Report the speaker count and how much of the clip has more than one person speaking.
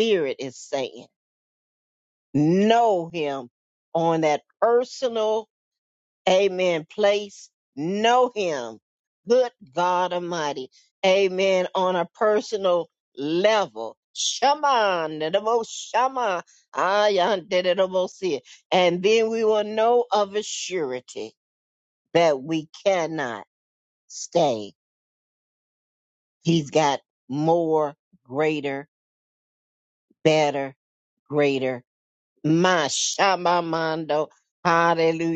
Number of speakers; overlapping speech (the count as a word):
one, no overlap